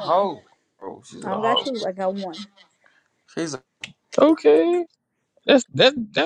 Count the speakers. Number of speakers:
3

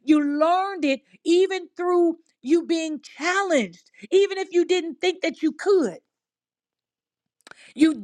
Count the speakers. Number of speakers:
1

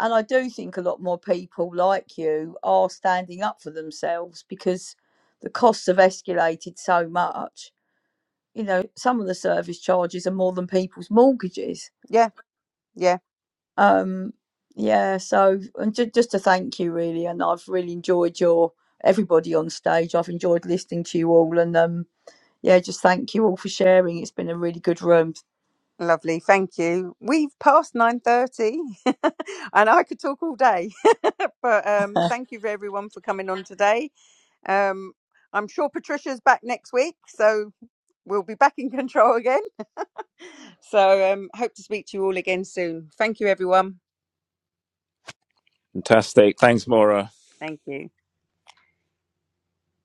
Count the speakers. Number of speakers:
3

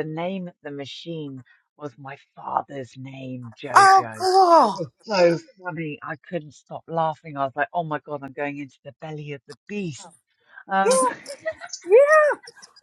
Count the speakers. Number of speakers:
2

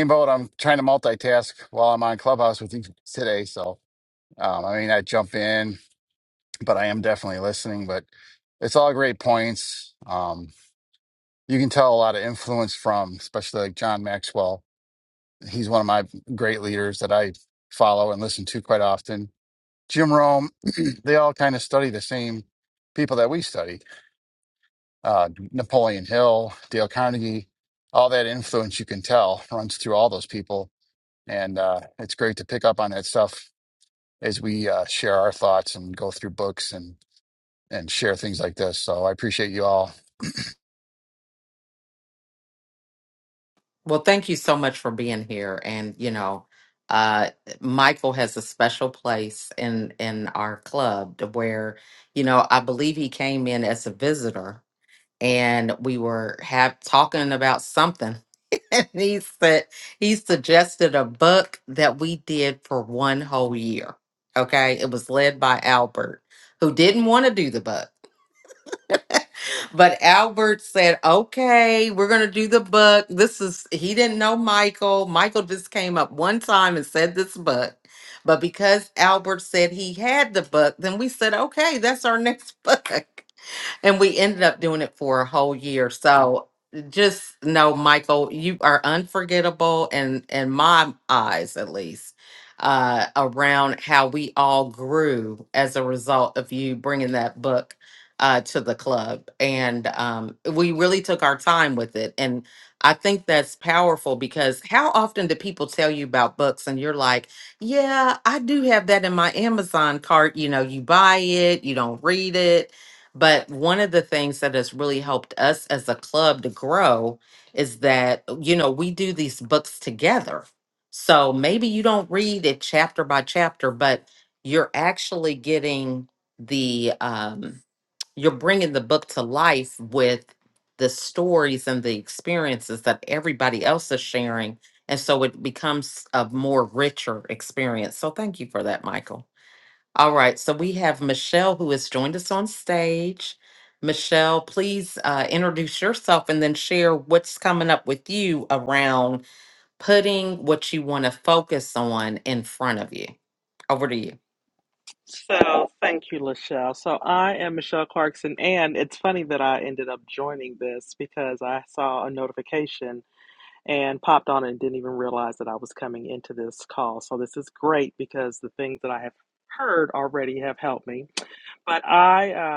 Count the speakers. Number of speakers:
3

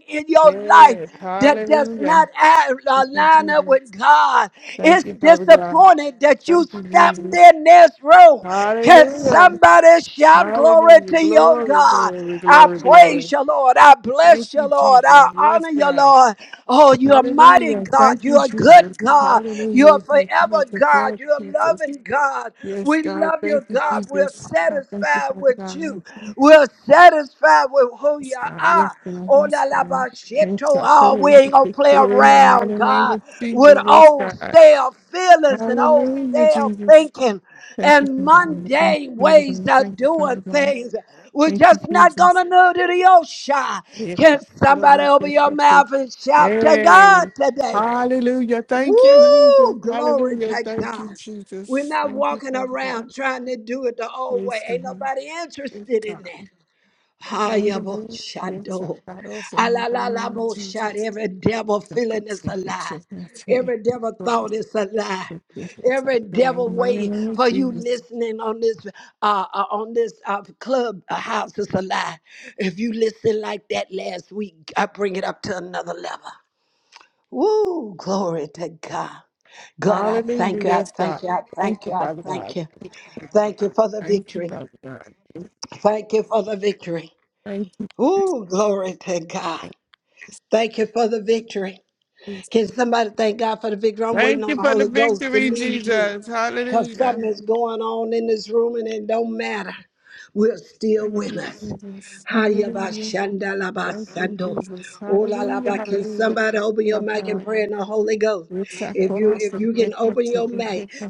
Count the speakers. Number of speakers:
2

